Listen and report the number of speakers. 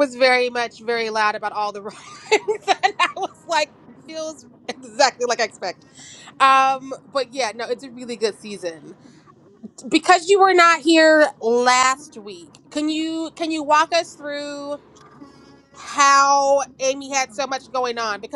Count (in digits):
1